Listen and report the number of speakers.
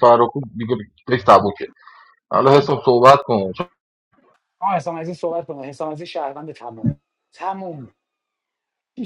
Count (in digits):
2